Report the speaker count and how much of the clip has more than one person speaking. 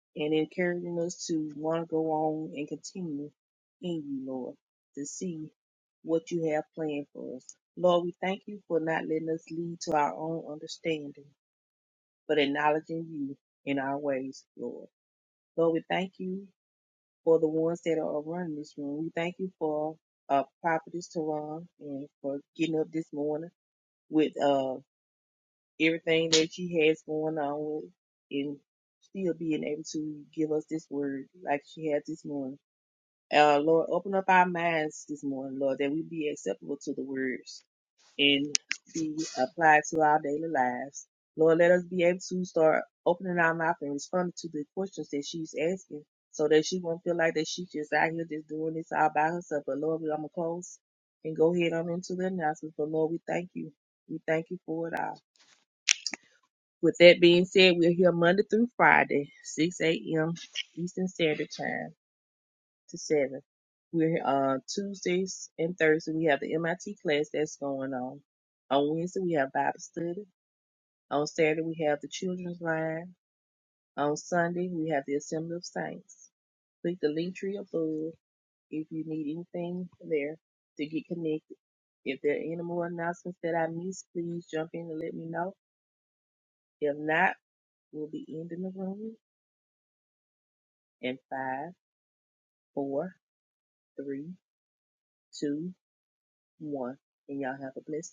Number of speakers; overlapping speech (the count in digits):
1, no overlap